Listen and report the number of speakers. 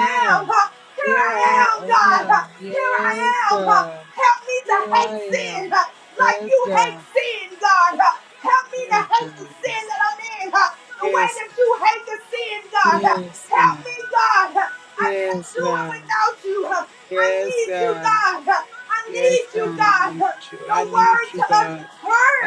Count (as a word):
two